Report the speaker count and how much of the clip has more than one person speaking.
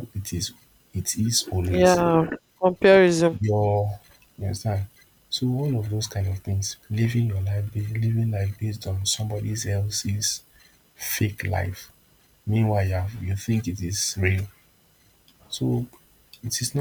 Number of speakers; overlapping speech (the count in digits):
2, about 2%